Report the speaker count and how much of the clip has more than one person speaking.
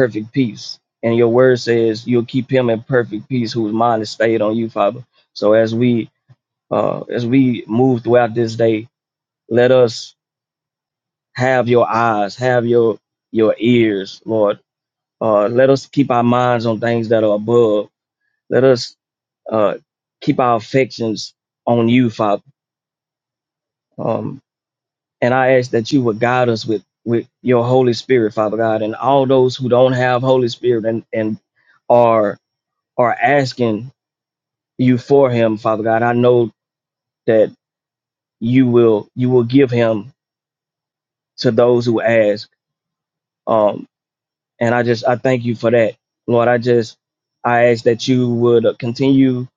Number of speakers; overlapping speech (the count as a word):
one, no overlap